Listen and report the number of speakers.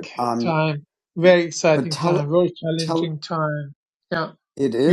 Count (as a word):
two